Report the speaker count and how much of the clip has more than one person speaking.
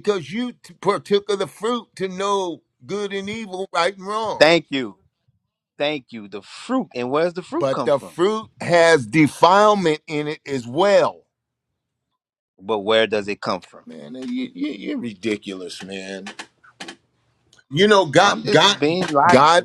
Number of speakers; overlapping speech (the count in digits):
2, about 8%